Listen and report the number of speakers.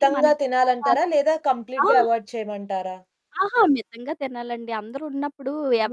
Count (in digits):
2